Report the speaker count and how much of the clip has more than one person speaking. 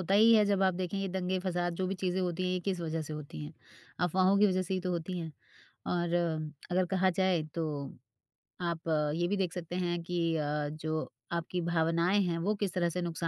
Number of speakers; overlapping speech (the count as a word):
one, no overlap